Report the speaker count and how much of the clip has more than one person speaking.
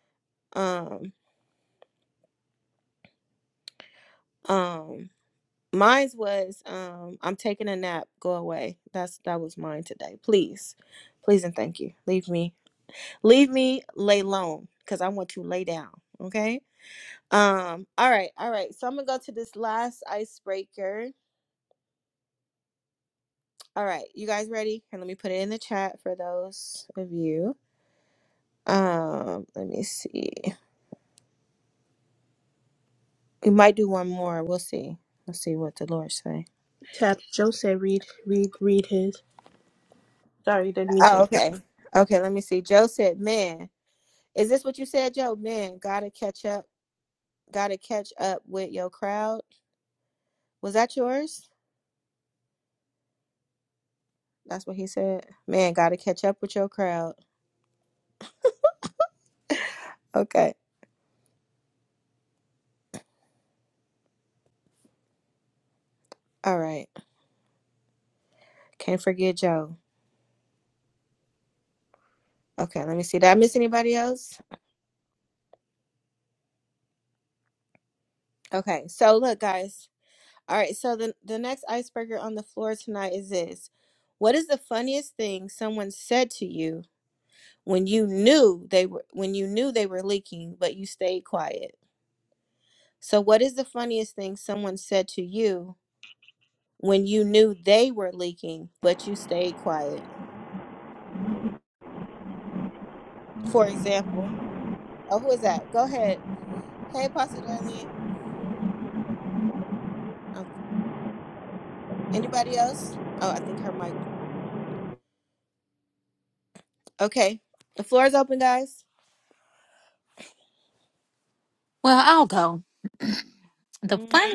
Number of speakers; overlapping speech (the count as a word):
three, about 1%